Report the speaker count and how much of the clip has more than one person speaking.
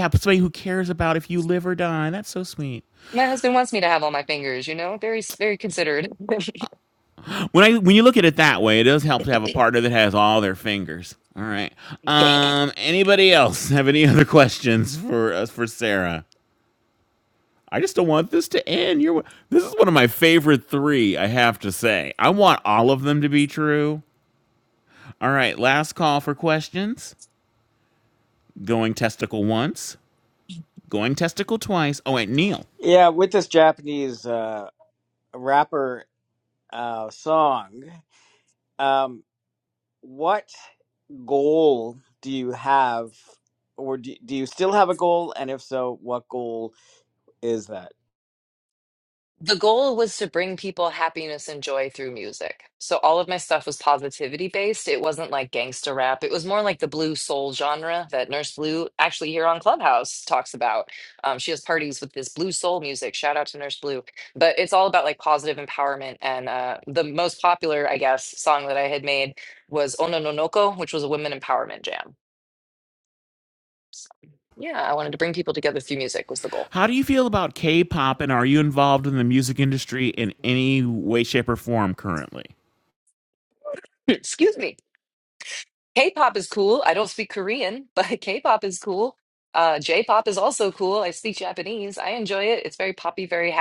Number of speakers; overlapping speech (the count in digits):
3, no overlap